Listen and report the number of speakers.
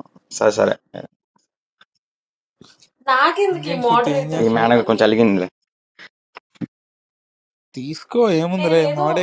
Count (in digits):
3